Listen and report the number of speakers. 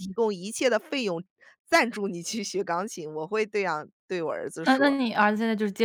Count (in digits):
2